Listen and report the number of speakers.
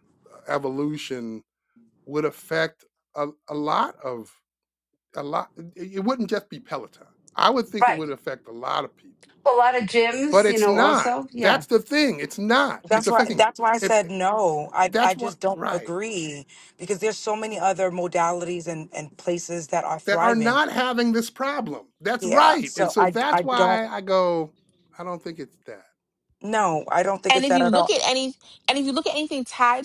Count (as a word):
four